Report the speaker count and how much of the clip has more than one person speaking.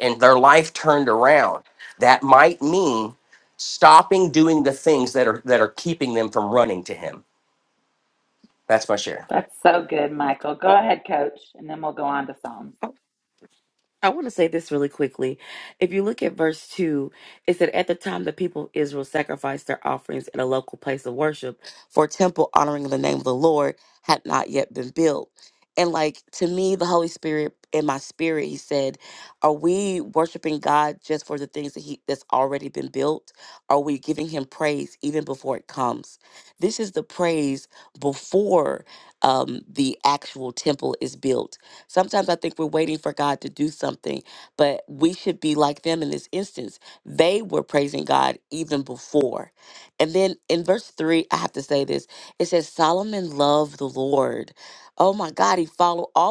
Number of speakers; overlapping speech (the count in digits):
3, no overlap